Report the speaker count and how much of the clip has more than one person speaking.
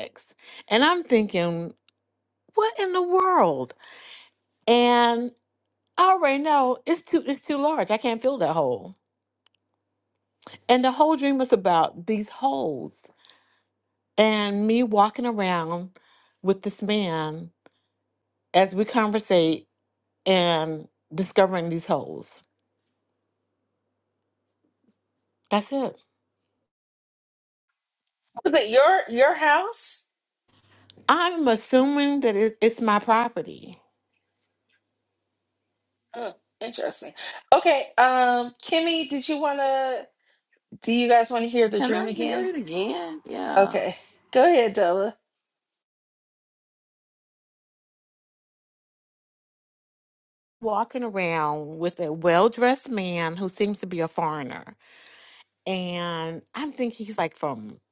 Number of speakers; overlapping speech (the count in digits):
3, about 2%